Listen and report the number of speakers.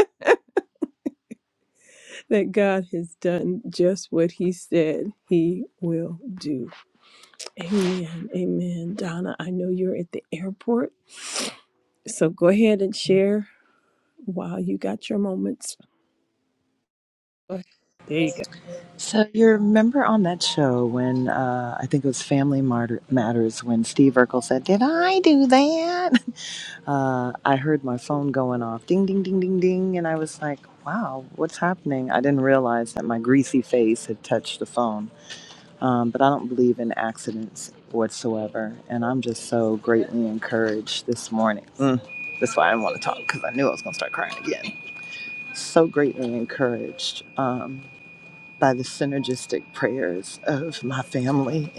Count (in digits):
2